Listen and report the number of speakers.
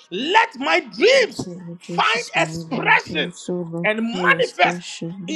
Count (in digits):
2